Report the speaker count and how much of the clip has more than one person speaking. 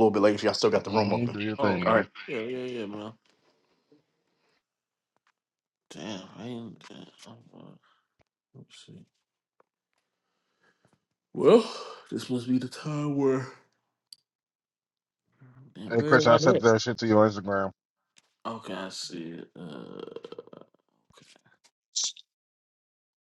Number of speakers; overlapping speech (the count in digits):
3, about 7%